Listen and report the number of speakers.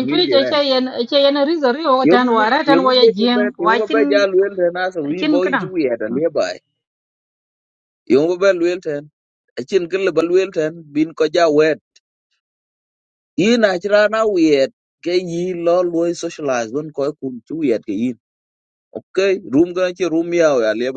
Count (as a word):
two